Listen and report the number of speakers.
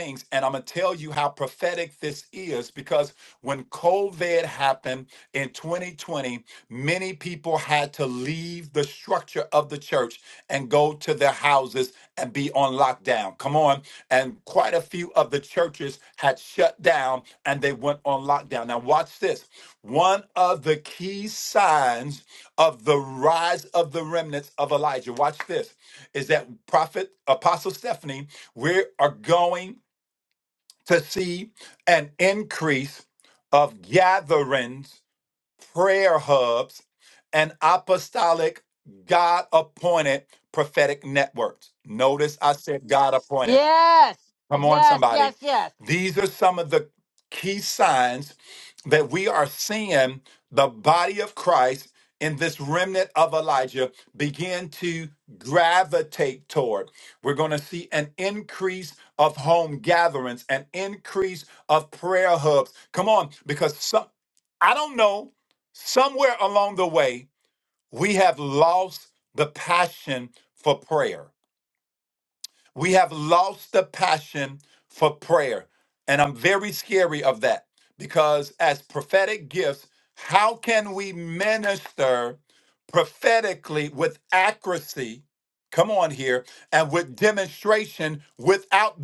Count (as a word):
two